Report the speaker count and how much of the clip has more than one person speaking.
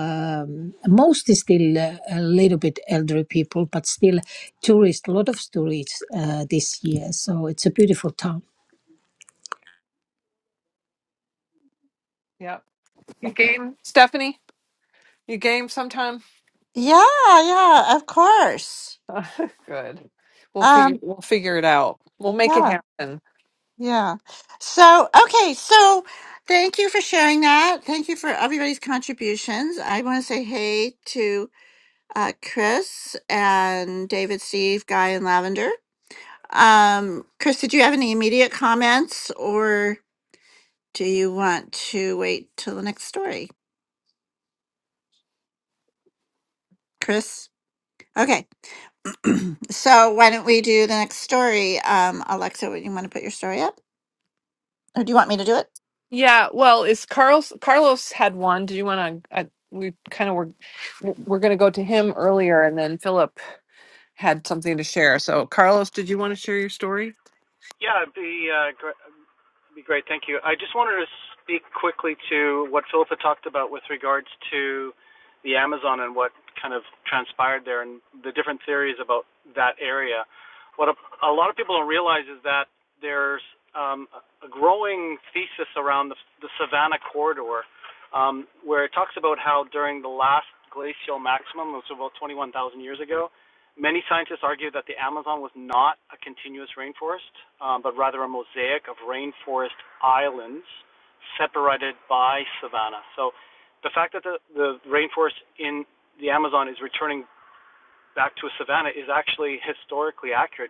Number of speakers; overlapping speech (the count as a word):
four, about 1%